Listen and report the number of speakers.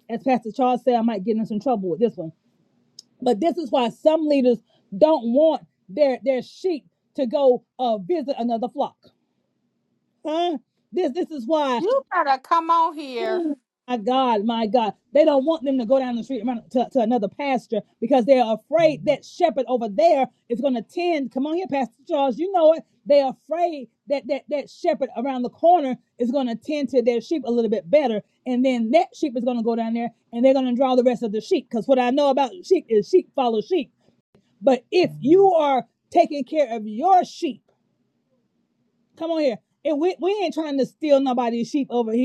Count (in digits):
2